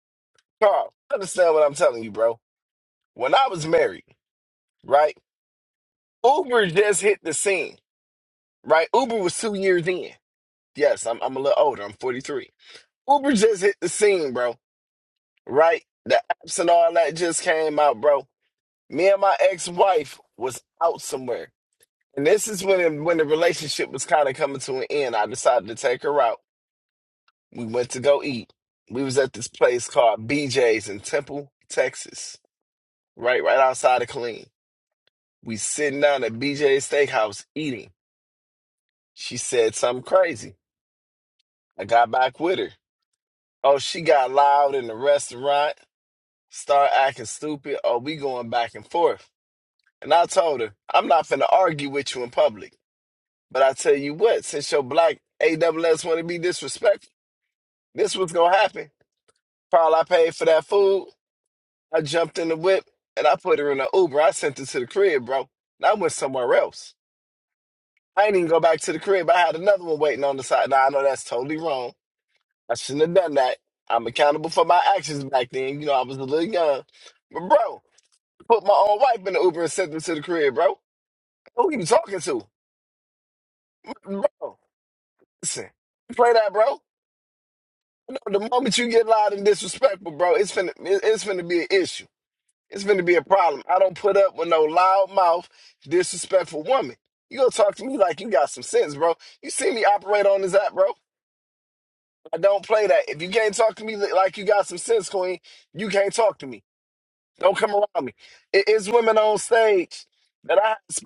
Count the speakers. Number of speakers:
one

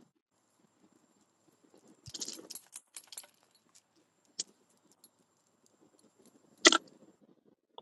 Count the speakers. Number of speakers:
zero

